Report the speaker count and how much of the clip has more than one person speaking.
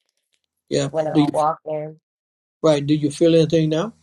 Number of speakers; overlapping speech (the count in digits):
2, about 12%